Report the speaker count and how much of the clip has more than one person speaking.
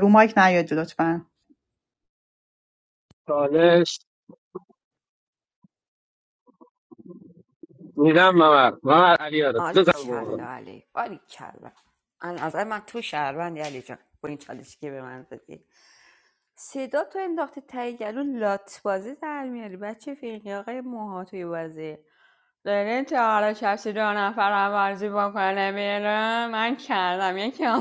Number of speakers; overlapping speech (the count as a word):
three, about 3%